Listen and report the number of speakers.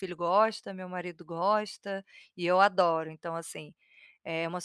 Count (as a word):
one